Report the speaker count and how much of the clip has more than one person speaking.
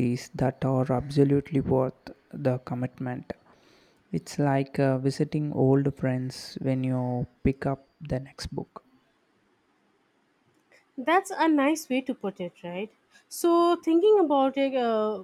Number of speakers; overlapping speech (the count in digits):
2, no overlap